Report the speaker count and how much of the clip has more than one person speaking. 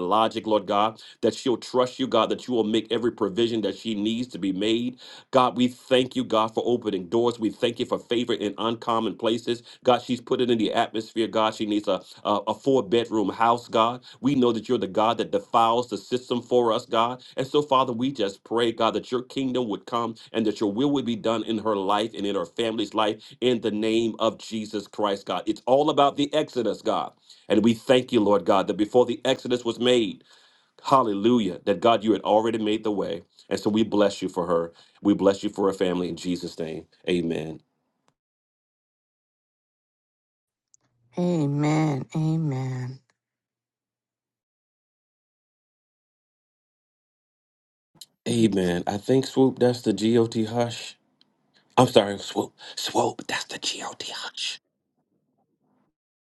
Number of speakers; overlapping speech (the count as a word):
two, no overlap